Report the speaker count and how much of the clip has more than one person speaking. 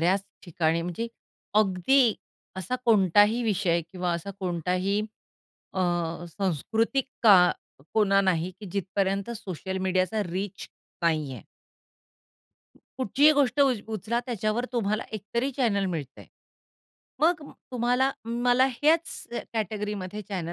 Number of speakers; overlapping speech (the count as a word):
one, no overlap